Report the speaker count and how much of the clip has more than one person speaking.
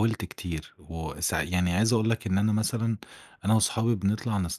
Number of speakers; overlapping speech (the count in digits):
1, no overlap